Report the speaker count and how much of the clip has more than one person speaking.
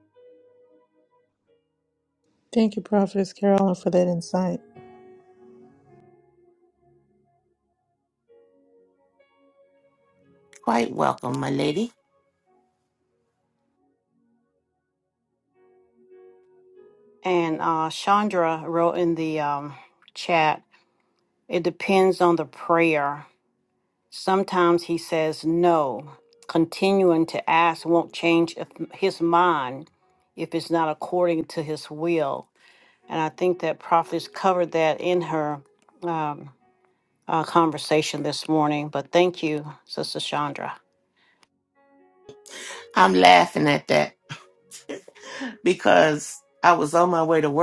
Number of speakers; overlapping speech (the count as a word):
three, no overlap